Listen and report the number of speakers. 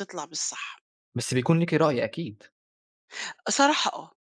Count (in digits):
2